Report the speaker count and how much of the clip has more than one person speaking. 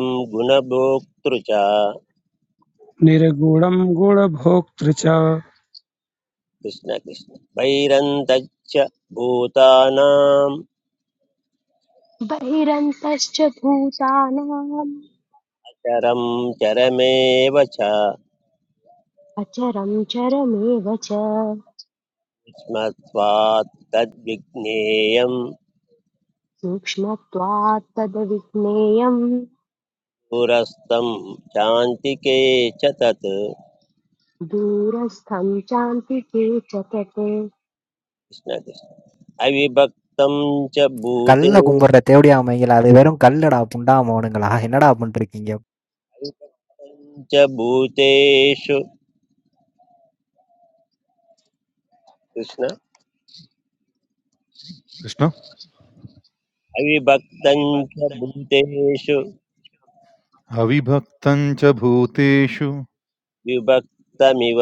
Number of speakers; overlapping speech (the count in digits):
5, about 1%